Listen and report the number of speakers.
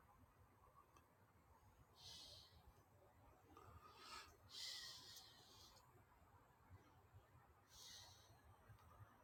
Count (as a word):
zero